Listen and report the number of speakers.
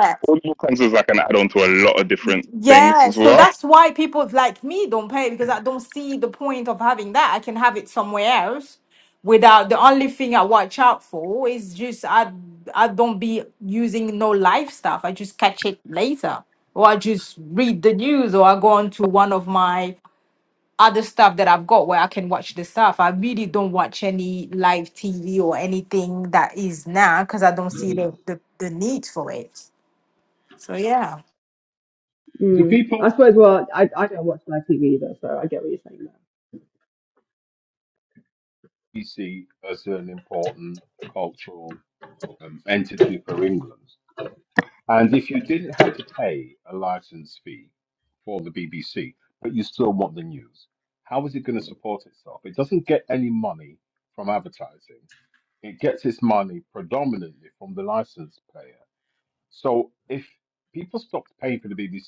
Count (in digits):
4